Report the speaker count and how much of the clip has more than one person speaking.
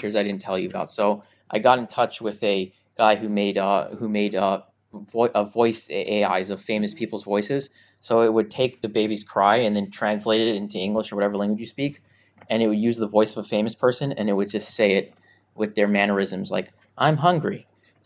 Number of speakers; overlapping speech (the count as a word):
one, no overlap